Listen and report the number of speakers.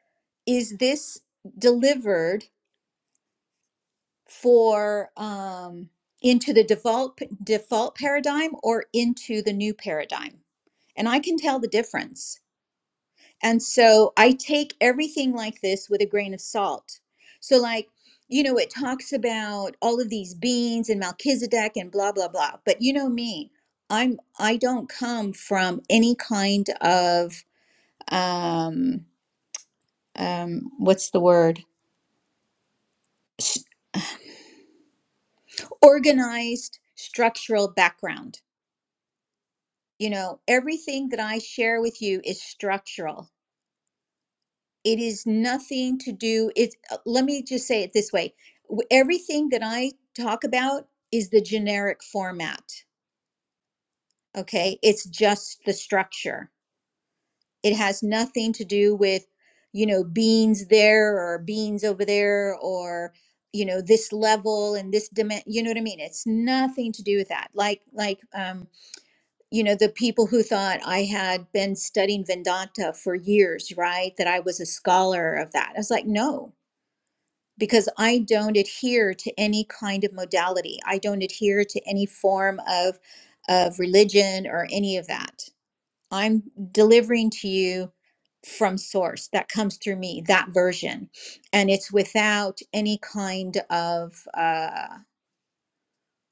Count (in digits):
1